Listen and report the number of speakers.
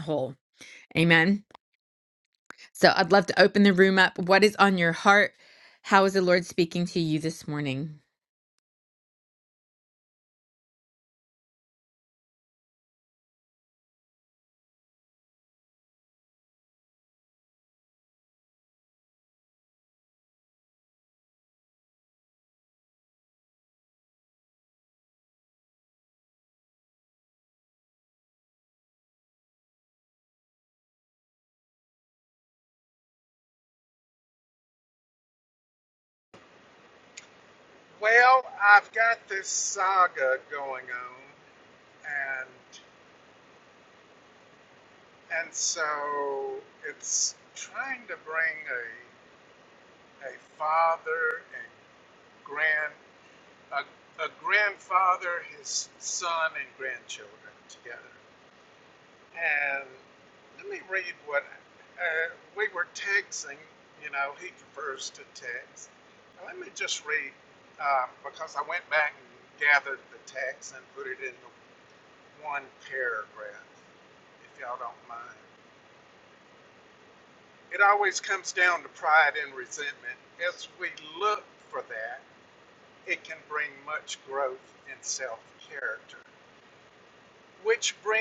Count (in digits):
2